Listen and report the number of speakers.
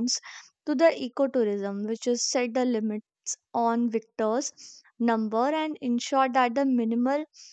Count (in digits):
1